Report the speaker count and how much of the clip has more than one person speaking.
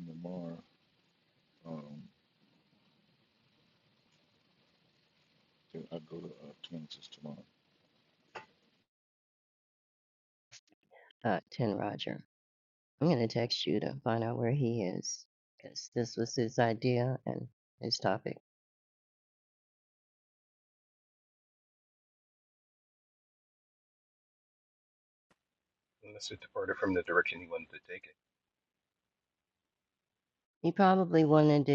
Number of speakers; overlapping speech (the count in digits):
3, no overlap